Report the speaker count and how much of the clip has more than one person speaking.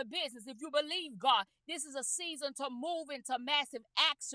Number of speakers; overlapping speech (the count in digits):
1, no overlap